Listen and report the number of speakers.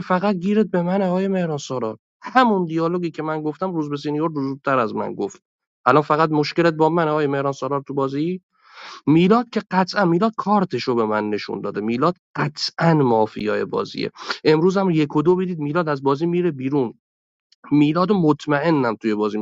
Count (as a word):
one